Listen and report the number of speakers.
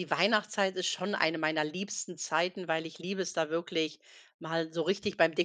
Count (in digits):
1